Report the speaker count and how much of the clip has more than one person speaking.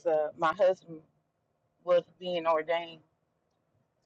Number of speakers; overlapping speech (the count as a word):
one, no overlap